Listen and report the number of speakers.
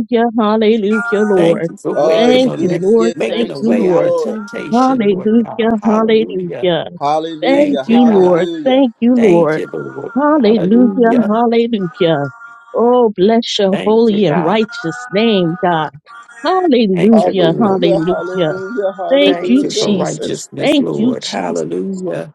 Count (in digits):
3